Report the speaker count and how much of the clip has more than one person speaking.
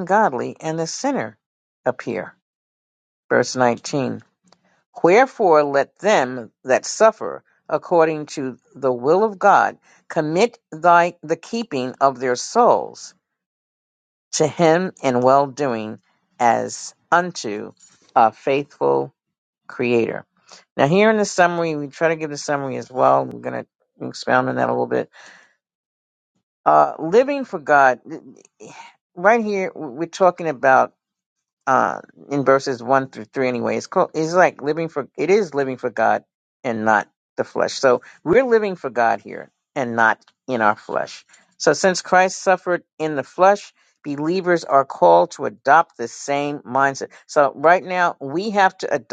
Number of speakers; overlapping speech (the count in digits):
1, no overlap